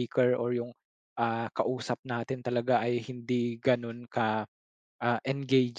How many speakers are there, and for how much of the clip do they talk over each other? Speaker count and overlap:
1, no overlap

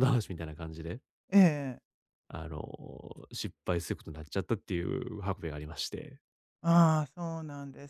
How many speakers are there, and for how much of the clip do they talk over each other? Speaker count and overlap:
2, no overlap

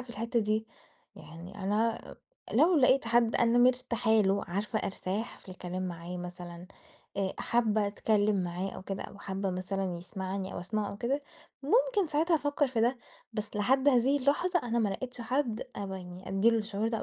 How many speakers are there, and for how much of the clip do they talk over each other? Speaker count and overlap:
1, no overlap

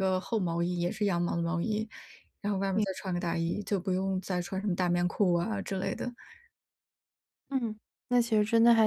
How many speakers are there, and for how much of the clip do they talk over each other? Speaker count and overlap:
2, about 1%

